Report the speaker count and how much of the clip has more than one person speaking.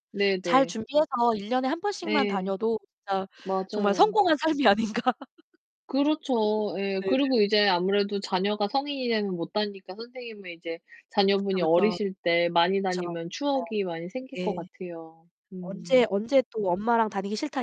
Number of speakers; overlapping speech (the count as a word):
two, about 13%